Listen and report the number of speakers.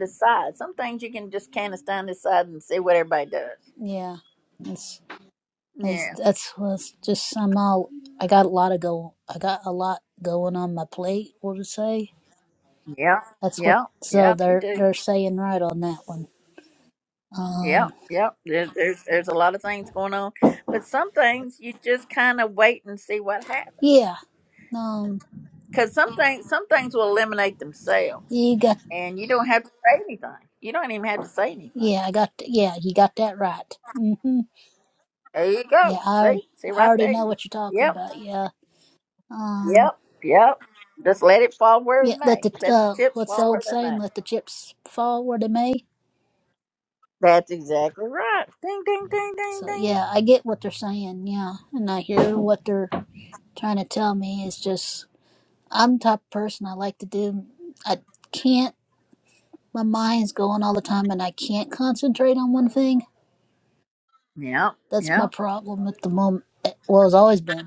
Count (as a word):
two